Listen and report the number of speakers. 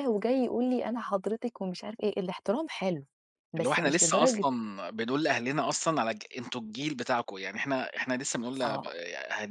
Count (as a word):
two